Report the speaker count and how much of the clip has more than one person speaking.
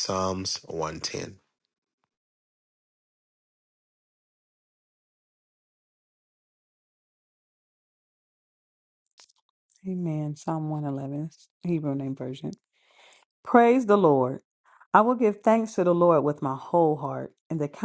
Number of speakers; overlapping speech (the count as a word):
two, no overlap